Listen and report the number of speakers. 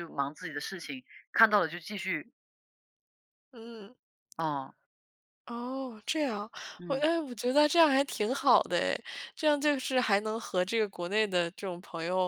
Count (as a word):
two